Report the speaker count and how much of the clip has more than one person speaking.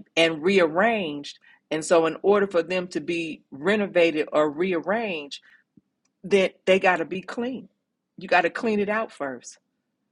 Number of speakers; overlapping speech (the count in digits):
1, no overlap